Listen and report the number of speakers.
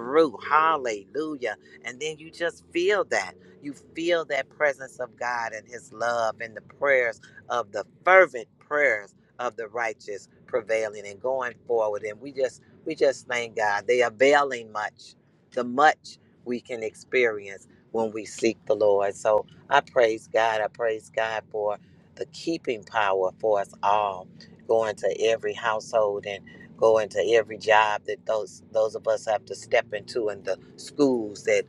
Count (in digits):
1